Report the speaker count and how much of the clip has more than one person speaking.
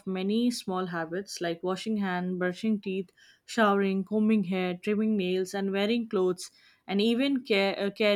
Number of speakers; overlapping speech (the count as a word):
one, no overlap